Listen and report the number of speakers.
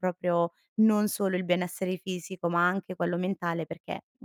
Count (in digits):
1